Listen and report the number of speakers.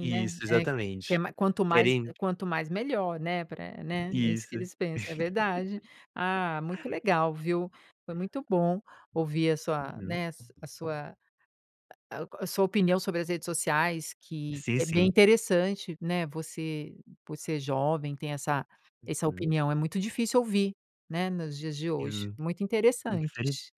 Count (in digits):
2